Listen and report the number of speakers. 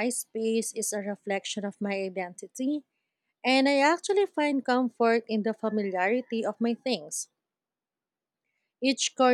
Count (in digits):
1